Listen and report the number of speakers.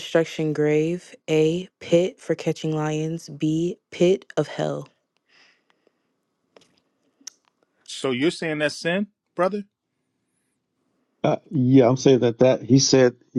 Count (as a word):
three